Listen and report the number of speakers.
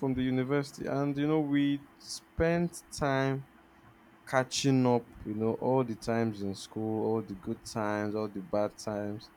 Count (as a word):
one